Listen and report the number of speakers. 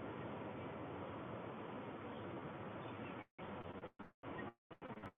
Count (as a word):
zero